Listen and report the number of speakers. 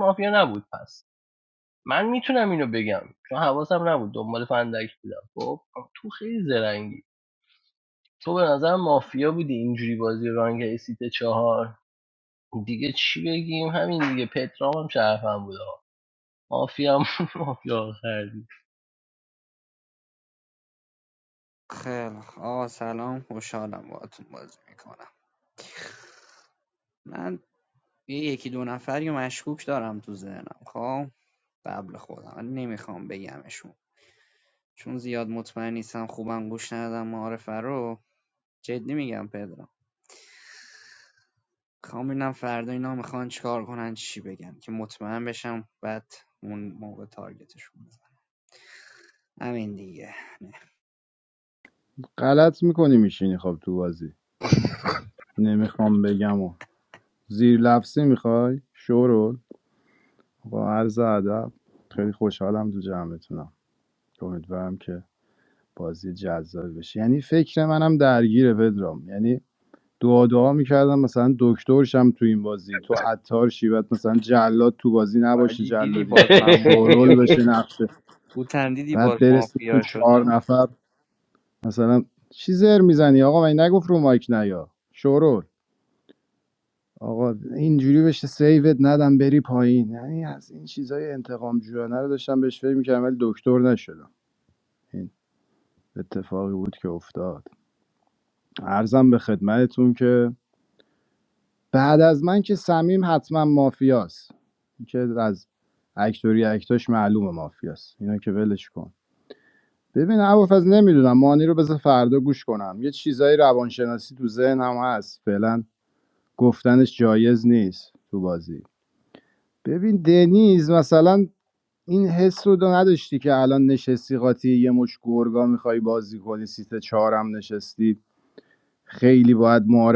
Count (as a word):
three